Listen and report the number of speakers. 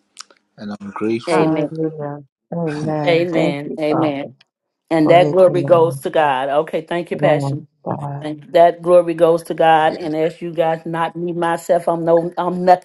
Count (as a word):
three